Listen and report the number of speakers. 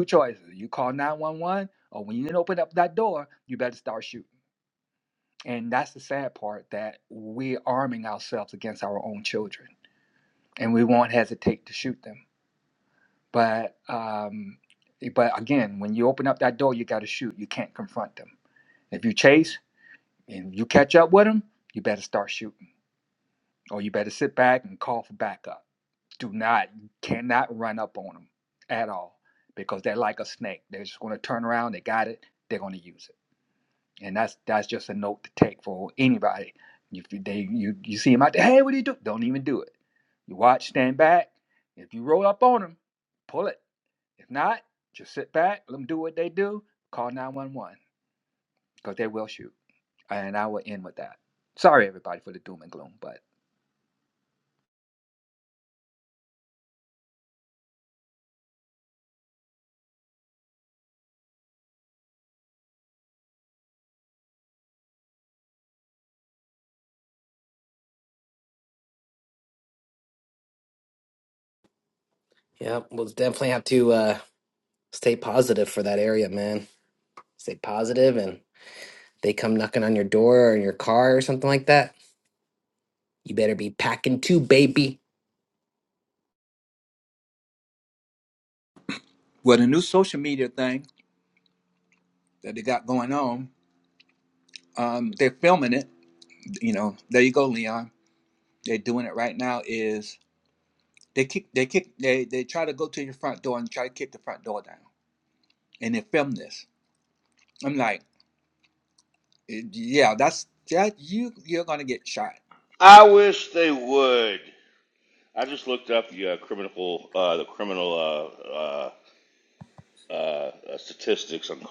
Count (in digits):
3